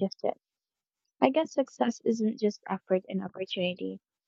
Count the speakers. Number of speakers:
one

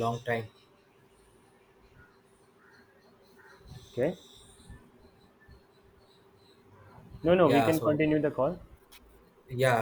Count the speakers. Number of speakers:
two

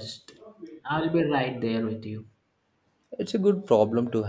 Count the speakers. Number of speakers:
two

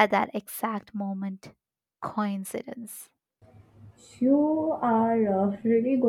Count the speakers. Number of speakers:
two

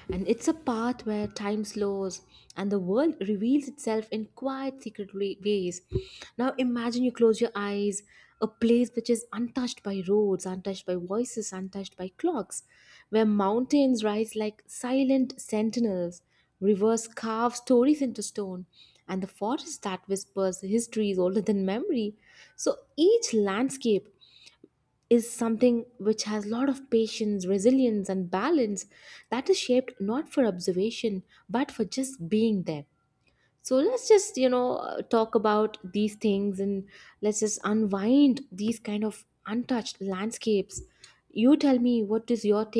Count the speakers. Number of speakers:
one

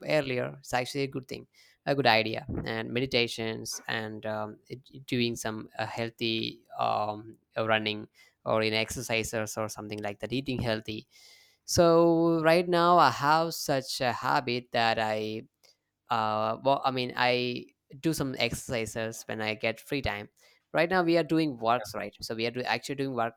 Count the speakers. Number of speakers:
one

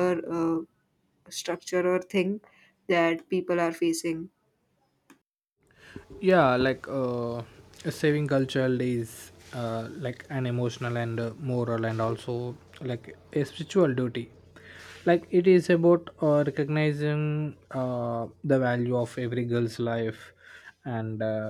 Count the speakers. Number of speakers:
two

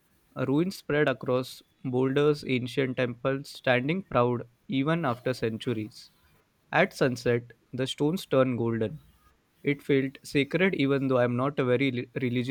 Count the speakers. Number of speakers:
one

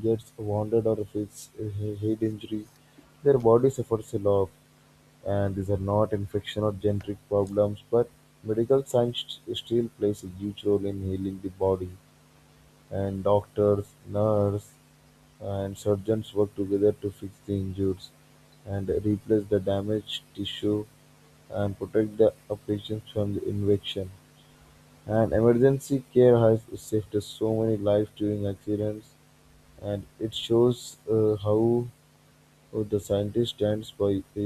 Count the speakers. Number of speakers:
one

